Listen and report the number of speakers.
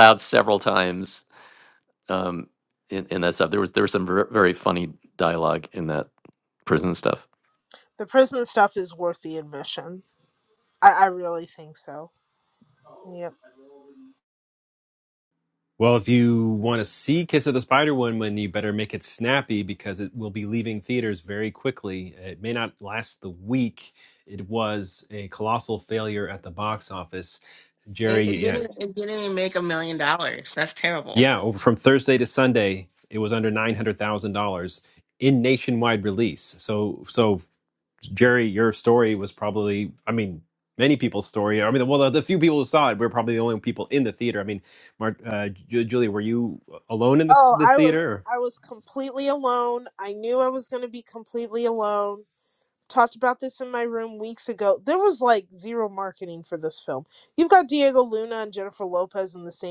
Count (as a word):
four